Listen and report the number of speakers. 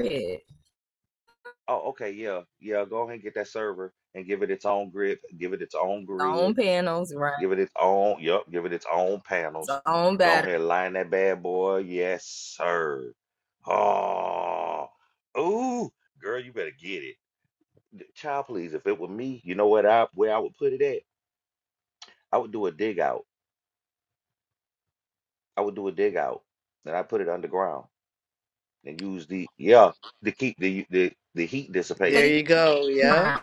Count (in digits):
3